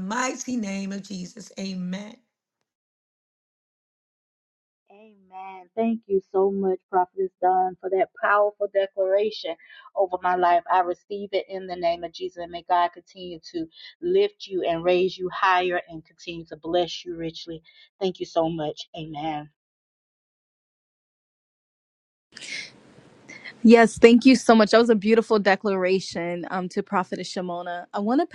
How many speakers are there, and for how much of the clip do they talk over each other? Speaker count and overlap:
3, no overlap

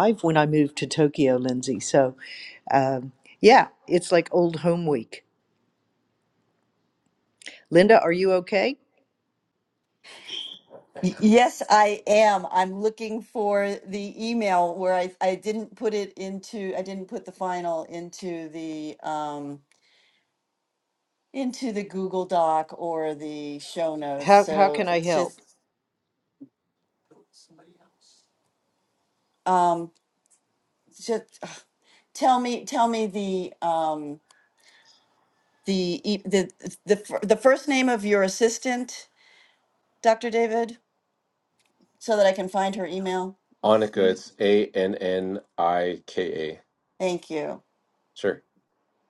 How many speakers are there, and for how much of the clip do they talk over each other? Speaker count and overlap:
3, about 2%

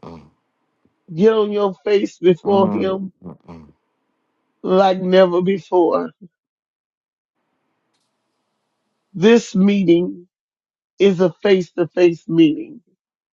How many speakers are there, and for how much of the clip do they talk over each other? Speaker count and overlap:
2, about 5%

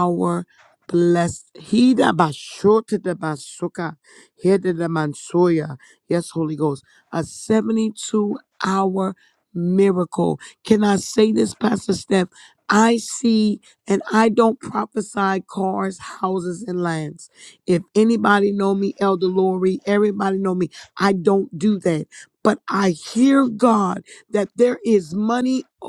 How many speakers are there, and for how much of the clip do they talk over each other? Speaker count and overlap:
1, no overlap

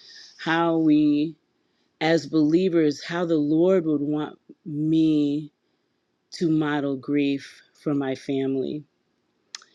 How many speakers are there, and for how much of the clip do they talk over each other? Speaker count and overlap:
1, no overlap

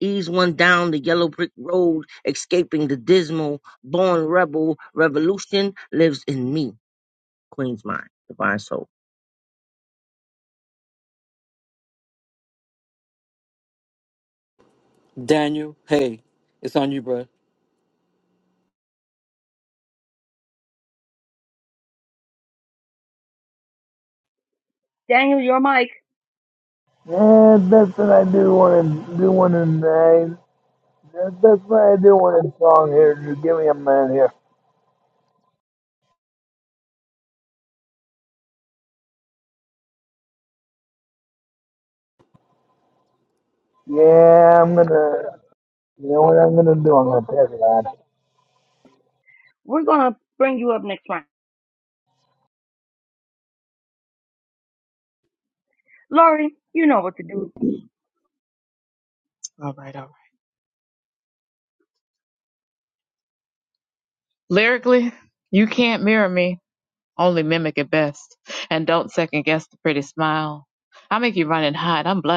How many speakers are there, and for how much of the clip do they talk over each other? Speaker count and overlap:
5, no overlap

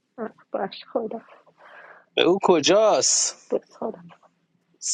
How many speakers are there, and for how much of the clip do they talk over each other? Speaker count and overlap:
2, no overlap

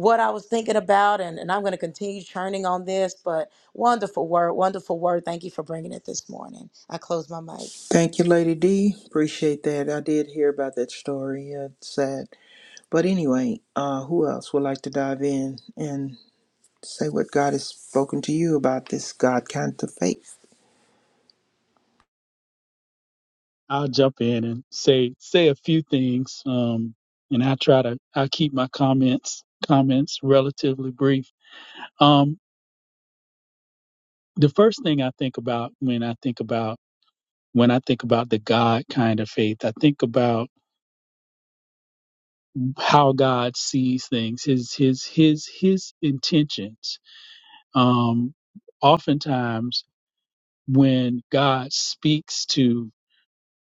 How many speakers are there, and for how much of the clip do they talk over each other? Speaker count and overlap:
3, no overlap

